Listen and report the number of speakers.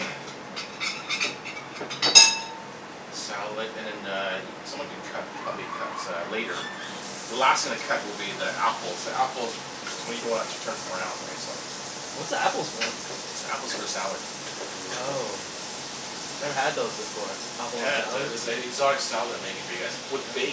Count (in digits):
2